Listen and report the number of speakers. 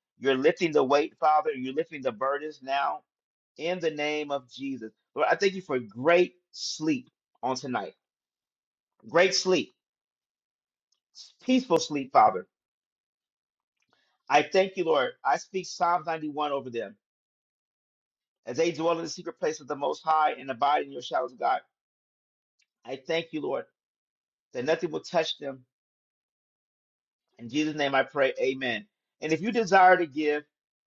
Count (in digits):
1